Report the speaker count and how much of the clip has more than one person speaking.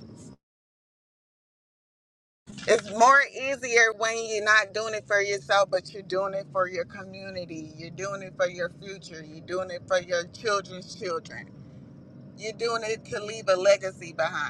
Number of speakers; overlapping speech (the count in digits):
1, no overlap